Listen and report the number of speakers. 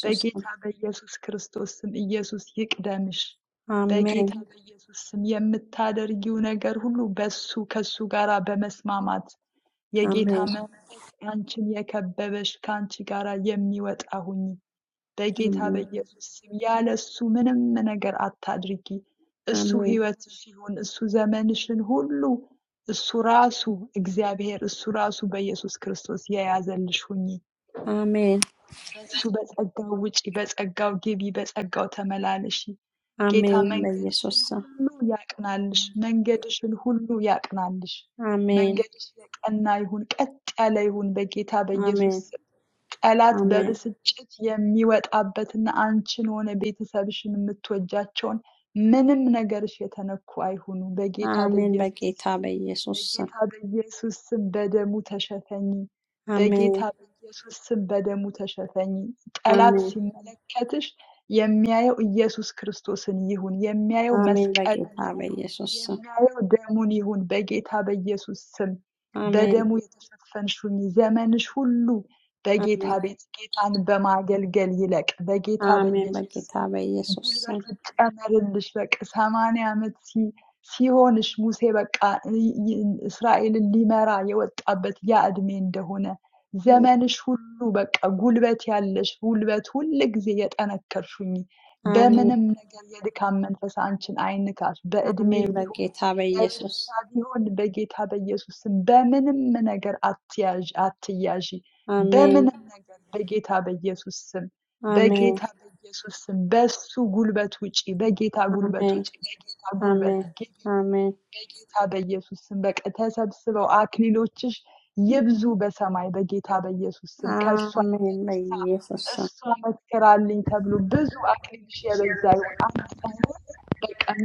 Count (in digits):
2